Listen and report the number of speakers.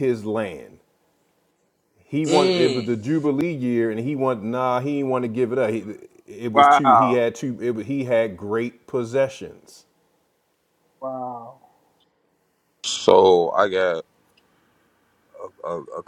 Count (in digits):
3